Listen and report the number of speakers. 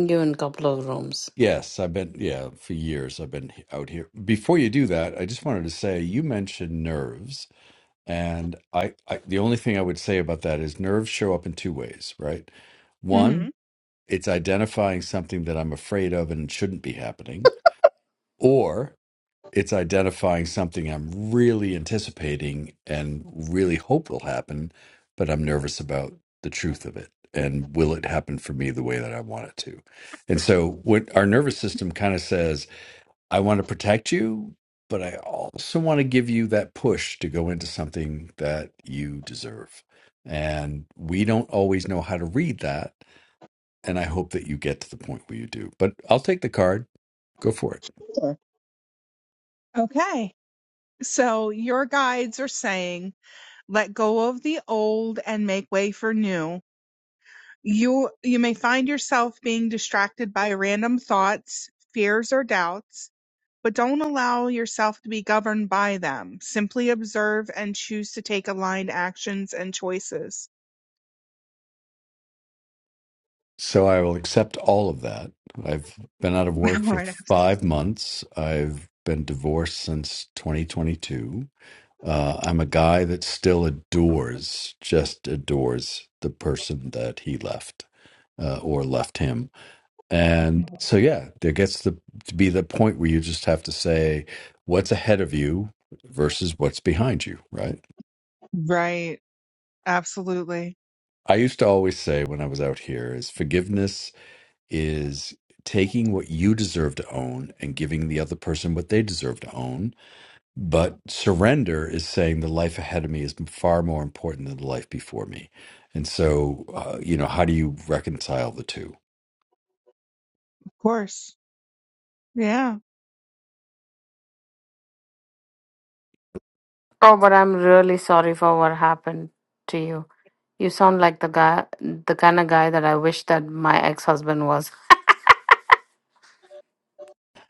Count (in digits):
3